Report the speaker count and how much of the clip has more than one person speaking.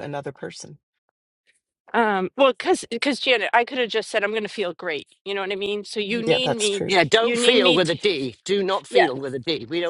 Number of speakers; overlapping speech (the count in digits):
3, about 17%